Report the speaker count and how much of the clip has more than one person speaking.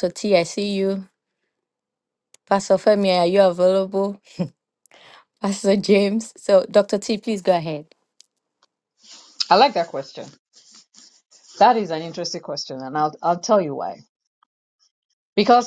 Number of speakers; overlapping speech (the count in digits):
2, no overlap